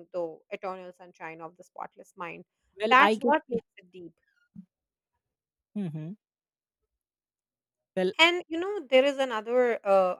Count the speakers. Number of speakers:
two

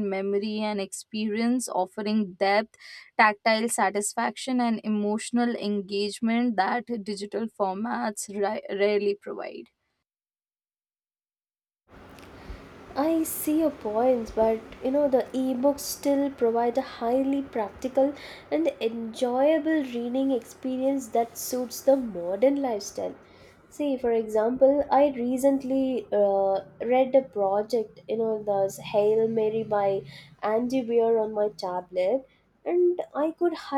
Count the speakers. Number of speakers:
two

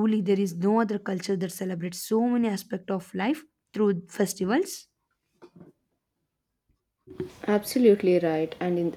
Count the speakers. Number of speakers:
two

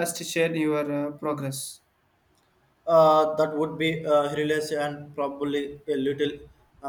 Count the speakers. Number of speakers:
two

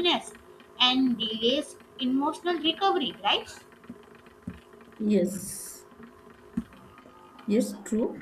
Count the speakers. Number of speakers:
two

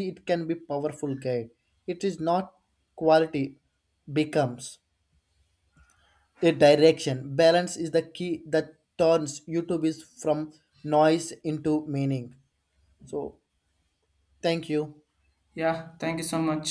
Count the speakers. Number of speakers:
two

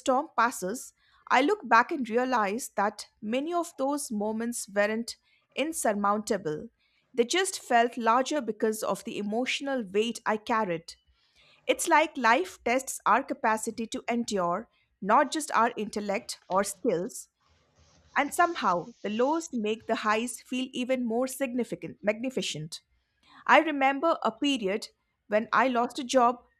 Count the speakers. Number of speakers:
one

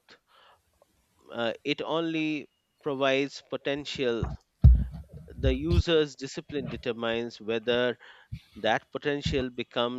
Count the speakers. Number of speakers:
one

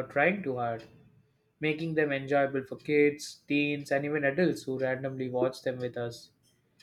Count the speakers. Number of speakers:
one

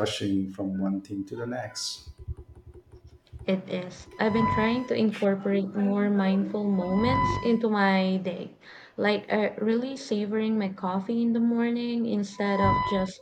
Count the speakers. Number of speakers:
two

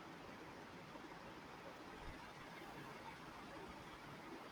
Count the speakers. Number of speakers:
zero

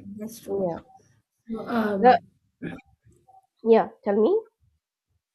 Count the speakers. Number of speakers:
two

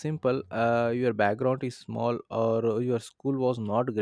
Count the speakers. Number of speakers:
one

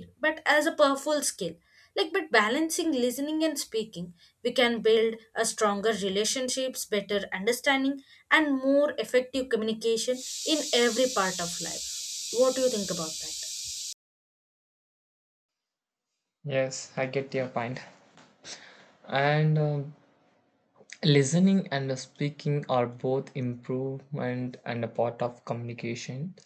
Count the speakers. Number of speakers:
two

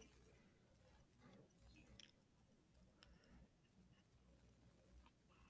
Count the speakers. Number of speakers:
zero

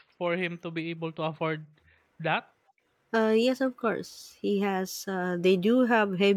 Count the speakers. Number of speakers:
two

